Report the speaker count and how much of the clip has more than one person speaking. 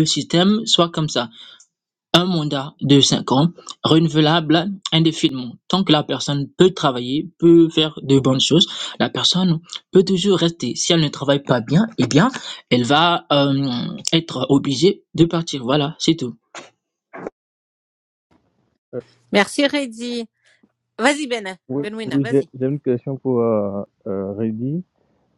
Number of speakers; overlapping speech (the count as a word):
three, about 3%